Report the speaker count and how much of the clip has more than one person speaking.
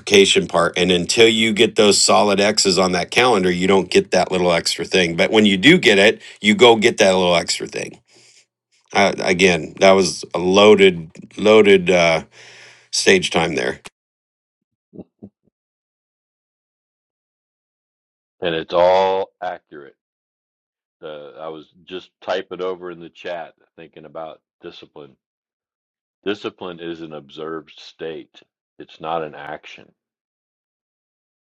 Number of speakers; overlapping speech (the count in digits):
2, no overlap